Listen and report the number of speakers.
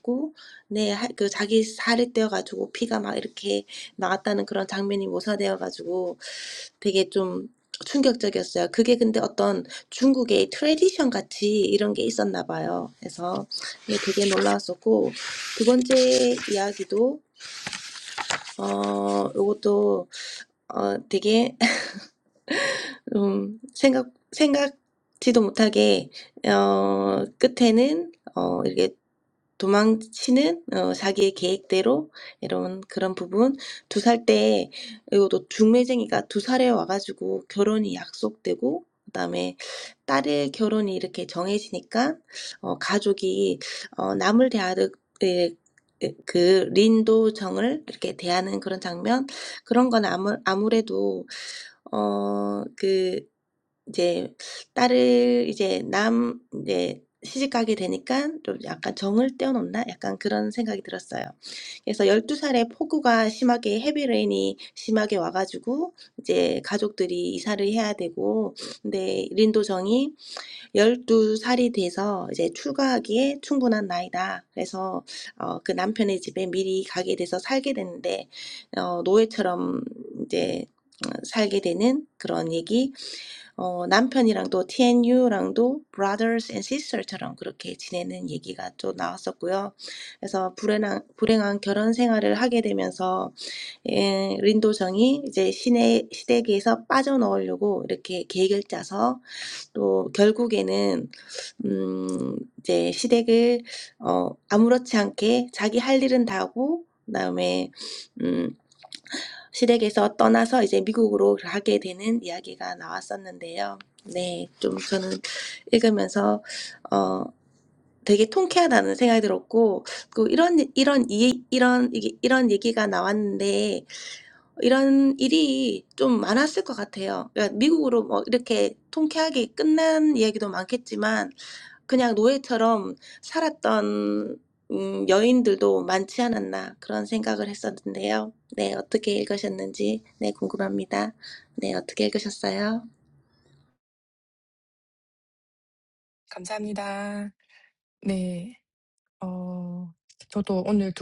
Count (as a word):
two